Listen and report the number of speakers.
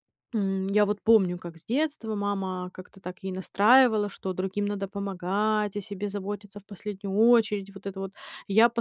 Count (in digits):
1